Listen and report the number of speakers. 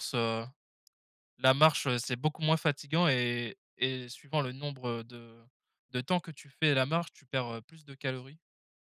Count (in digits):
1